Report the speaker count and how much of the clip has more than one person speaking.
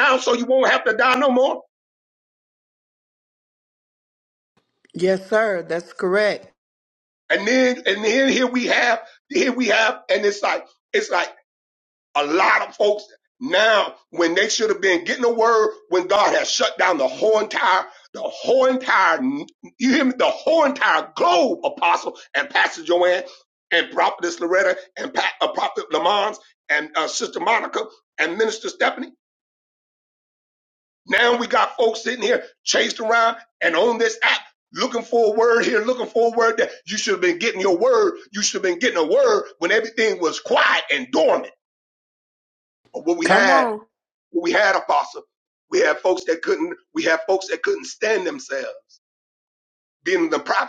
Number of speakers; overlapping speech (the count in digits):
2, about 1%